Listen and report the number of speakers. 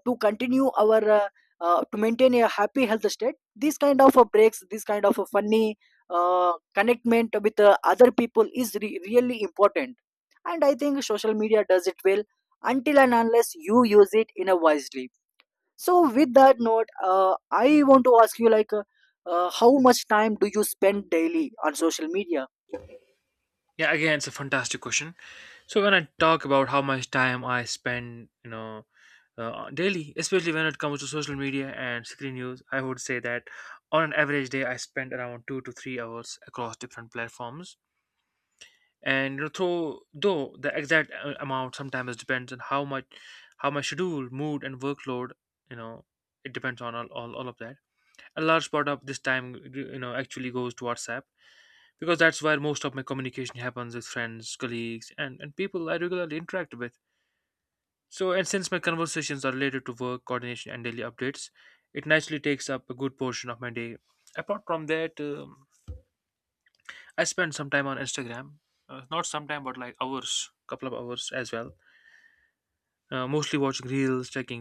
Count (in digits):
2